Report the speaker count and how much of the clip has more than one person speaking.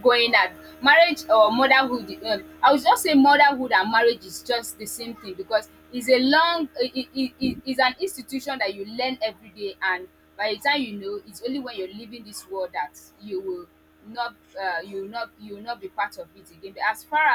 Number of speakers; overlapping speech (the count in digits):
1, no overlap